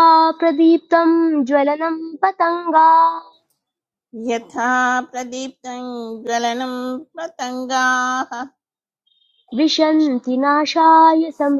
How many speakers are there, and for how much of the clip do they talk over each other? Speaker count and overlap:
two, no overlap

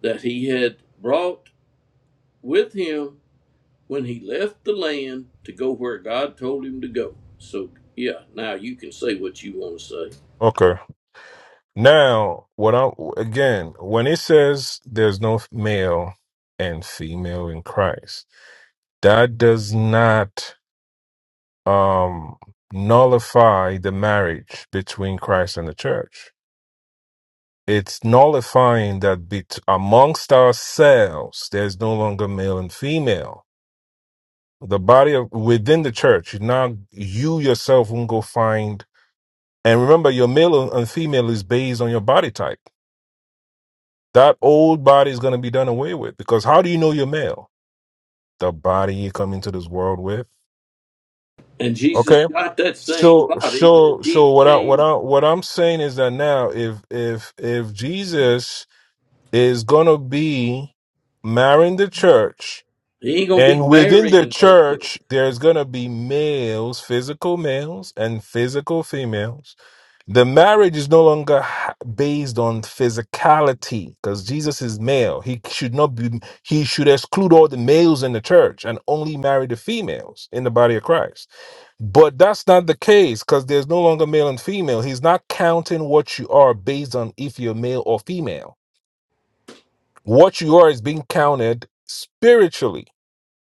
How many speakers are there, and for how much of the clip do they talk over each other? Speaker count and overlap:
two, about 4%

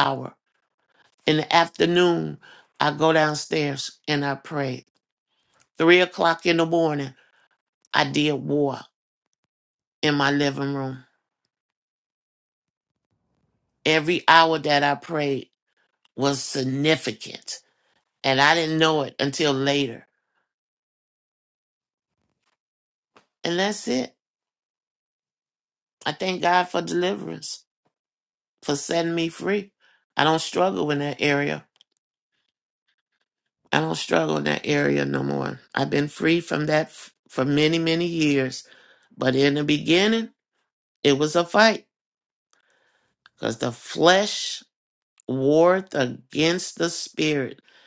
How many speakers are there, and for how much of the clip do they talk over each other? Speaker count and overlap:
one, no overlap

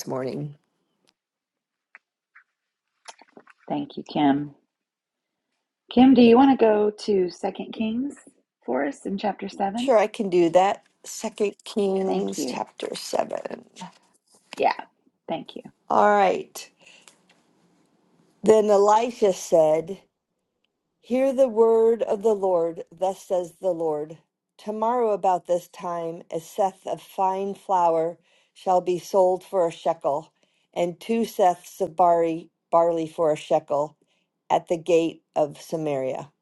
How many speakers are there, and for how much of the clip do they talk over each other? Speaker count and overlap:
two, about 2%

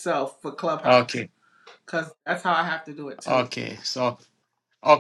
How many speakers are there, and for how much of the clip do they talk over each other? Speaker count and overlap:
two, about 10%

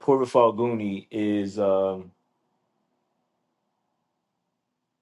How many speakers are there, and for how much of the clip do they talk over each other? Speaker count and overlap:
one, no overlap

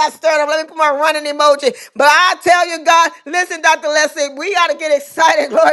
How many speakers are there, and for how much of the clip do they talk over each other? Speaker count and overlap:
one, no overlap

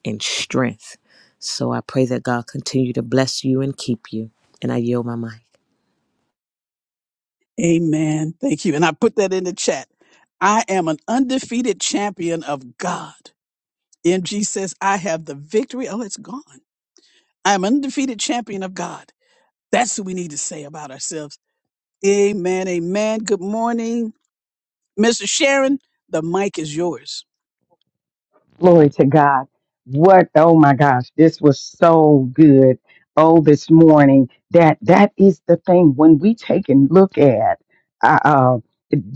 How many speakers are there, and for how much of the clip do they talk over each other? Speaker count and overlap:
three, no overlap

